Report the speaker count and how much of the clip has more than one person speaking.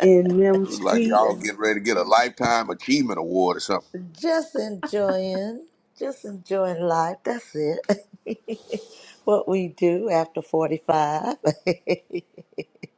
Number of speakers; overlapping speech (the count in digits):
3, about 4%